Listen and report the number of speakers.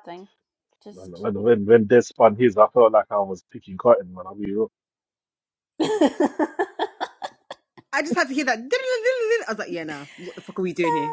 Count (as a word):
three